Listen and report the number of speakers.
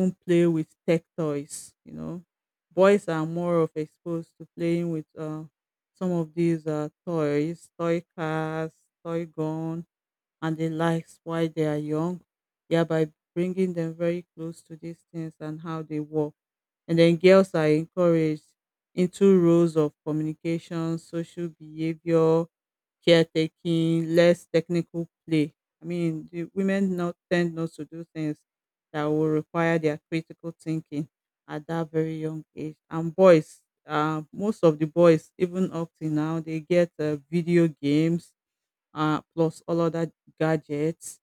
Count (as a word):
one